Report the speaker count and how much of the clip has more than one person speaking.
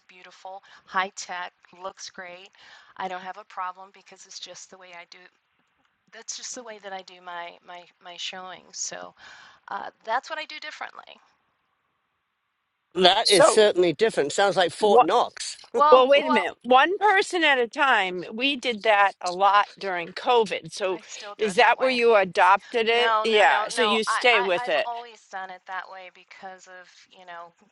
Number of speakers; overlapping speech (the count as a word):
three, about 14%